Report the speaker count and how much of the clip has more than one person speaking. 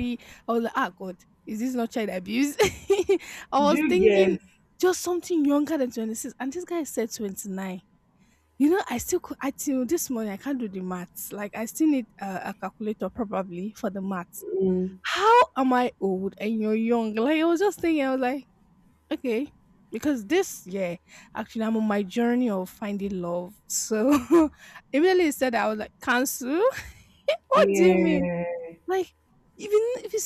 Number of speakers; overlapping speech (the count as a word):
two, about 5%